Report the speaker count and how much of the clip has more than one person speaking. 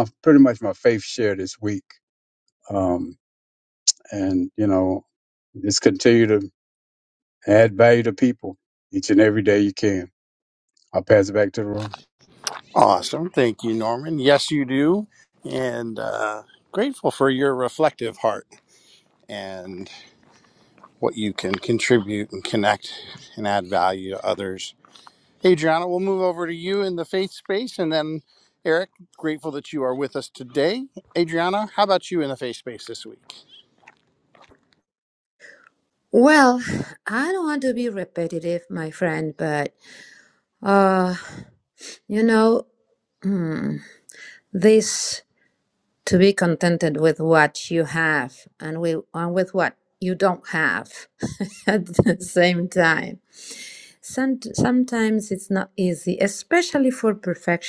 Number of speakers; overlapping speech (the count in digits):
3, no overlap